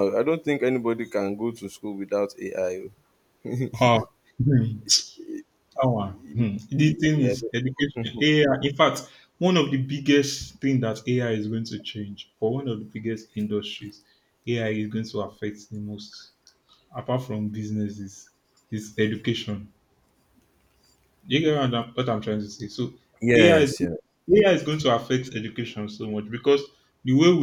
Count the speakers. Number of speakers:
2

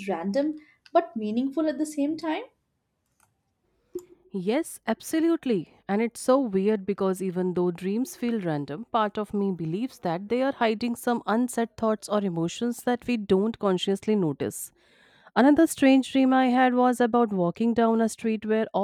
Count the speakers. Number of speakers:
2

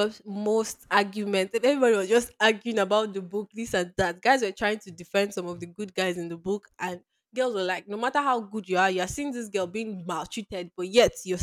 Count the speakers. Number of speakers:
1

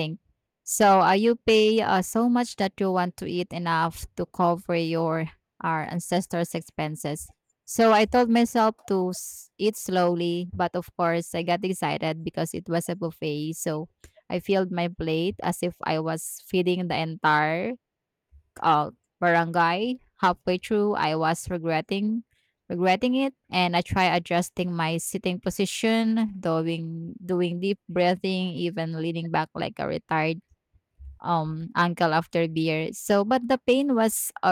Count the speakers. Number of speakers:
1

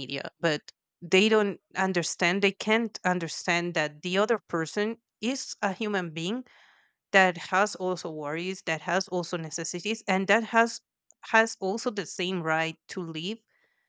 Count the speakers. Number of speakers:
1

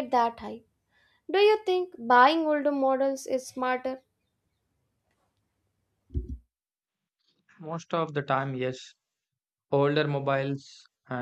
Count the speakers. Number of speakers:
2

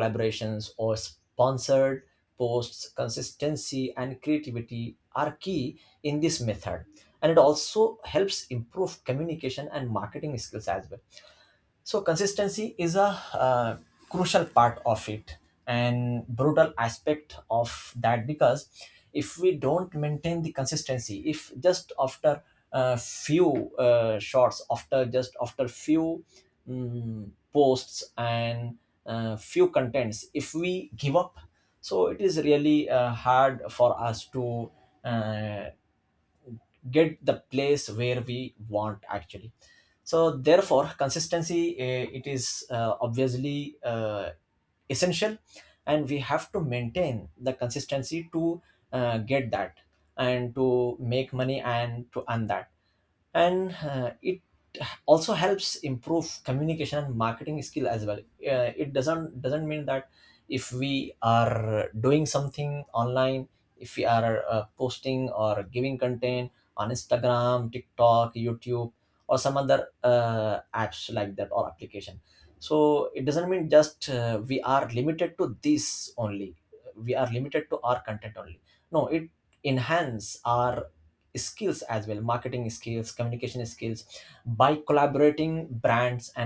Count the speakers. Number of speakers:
1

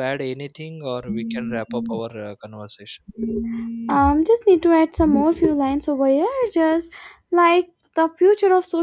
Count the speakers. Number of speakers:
2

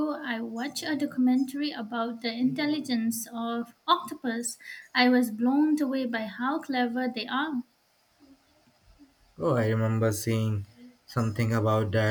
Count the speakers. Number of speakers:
2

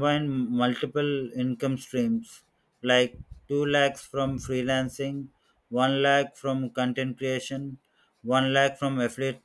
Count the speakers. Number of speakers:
1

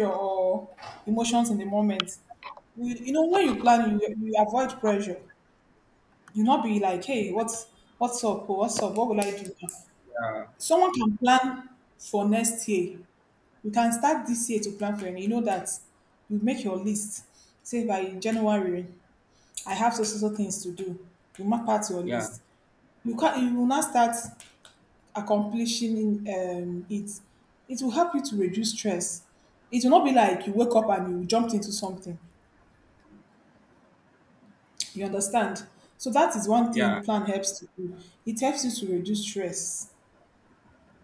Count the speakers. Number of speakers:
2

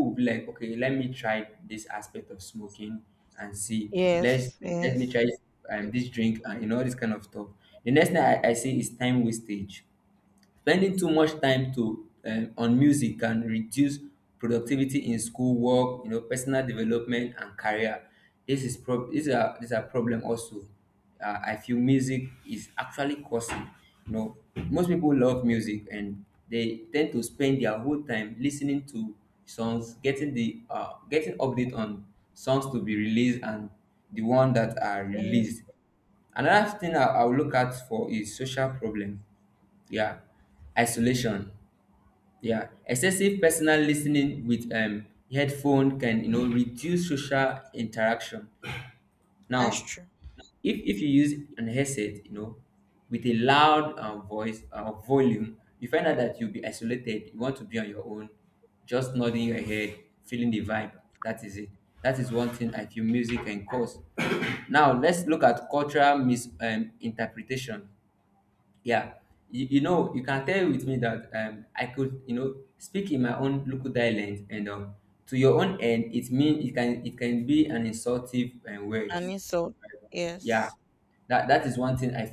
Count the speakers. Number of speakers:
2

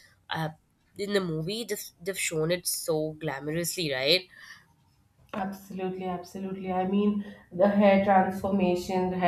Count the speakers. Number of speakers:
2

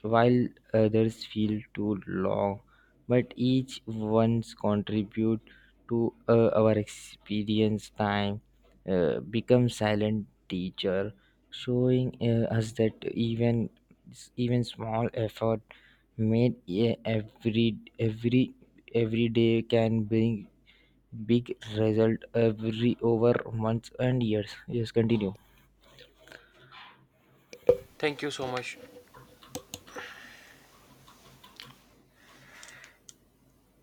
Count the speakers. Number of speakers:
2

